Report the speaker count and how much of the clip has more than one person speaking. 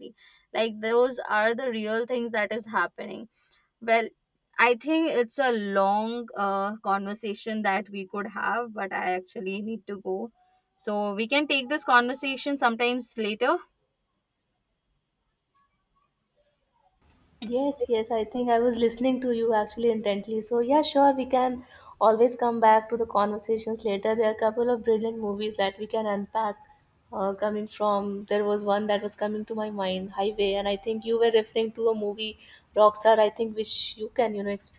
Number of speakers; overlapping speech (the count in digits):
2, no overlap